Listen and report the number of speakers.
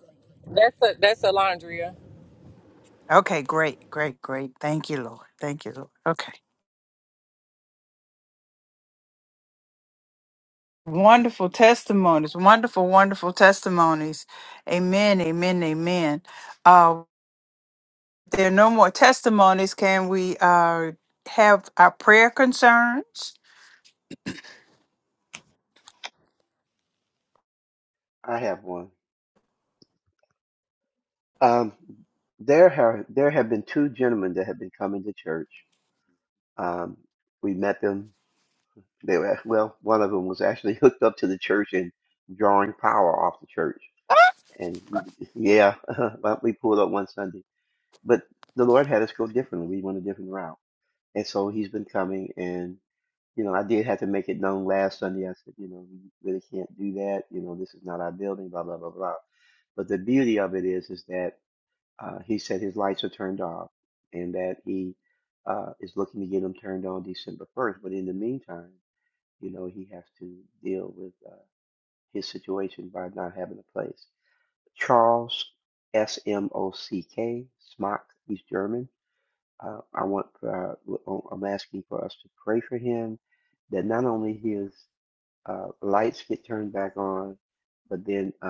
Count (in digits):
3